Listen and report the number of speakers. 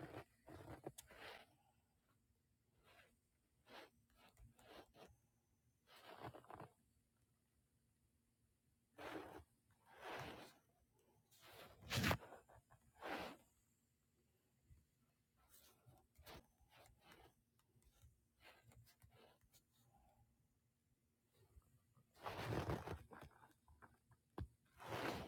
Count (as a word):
zero